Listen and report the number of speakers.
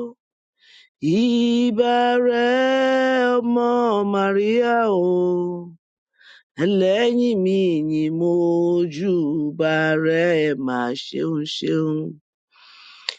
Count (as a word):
one